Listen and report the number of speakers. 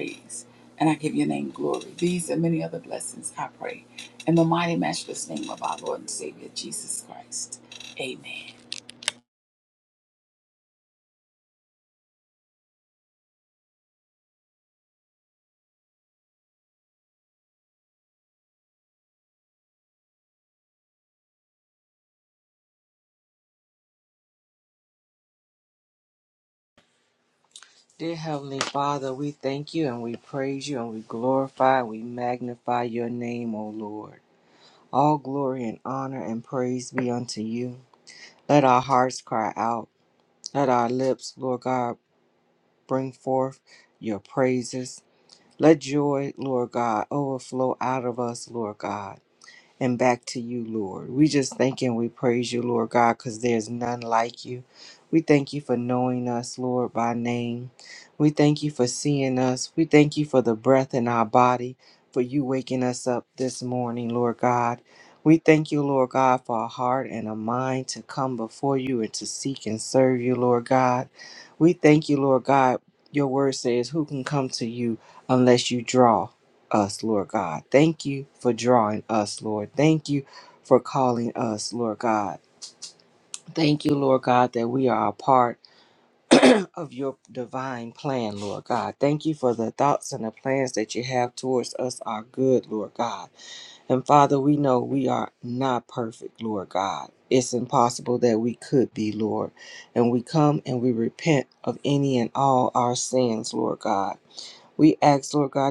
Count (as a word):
two